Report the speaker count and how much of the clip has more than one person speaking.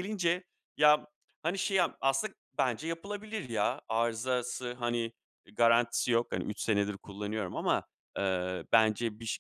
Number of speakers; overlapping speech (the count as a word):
one, no overlap